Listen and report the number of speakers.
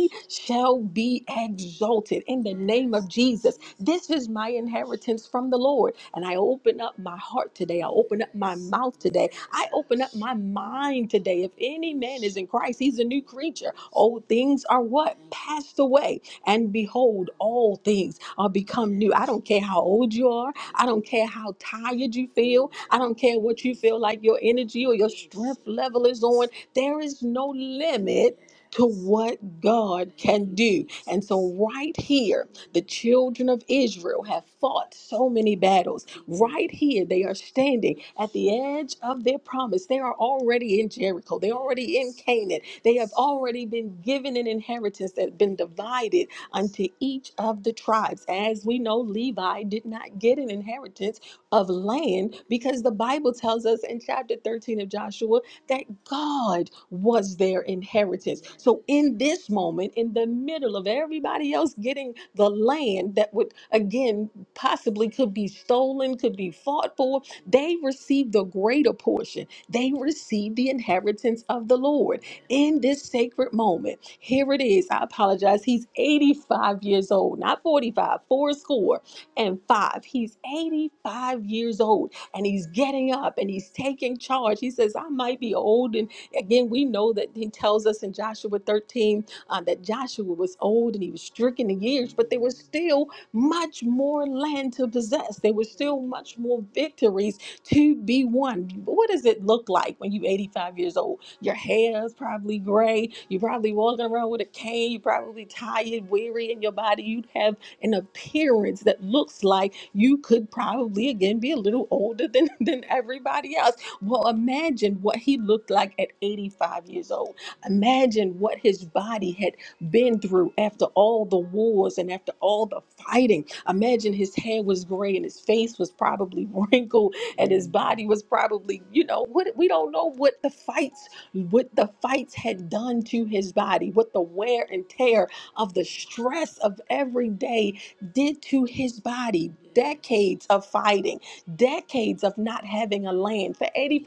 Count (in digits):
1